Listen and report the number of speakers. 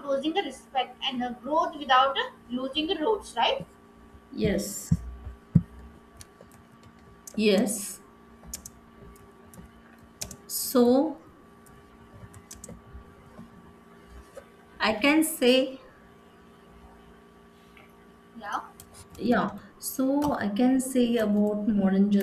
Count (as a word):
two